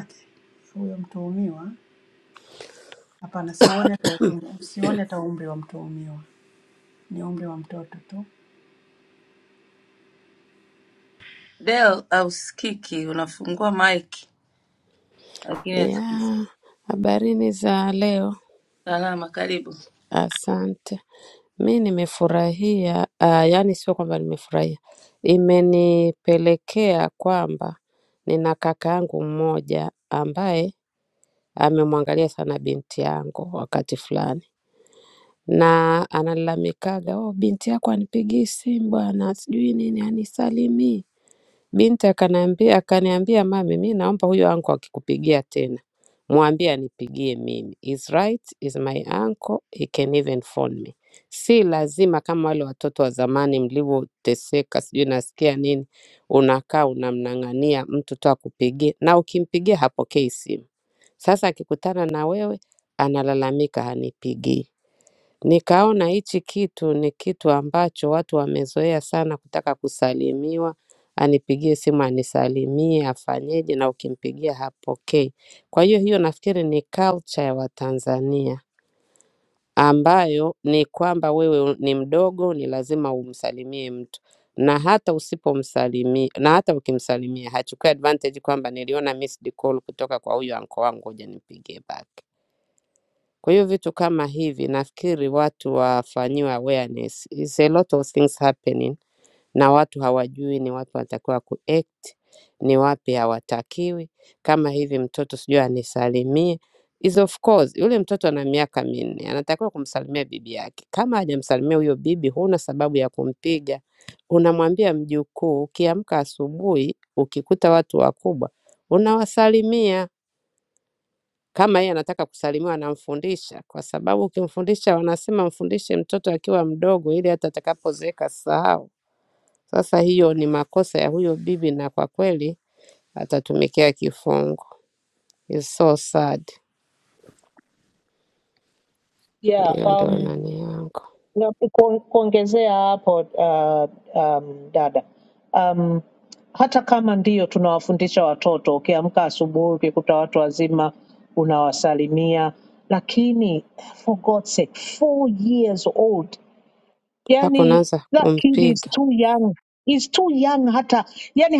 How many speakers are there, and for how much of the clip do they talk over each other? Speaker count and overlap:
four, about 2%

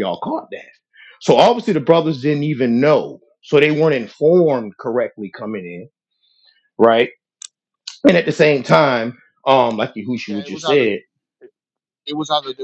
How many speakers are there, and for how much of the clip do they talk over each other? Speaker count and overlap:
two, about 5%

